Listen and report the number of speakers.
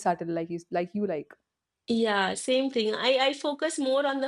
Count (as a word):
two